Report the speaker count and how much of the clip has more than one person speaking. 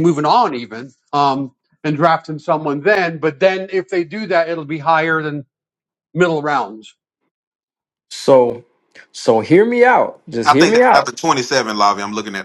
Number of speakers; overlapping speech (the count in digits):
3, about 5%